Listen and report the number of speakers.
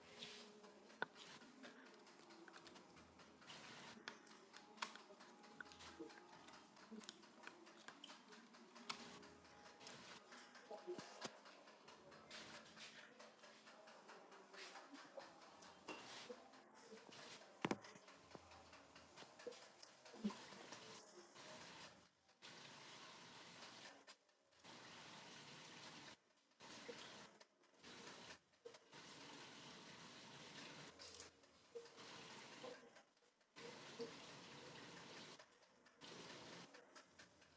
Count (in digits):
0